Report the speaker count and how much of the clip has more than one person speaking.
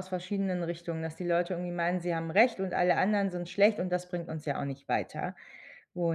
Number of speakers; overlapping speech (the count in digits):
1, no overlap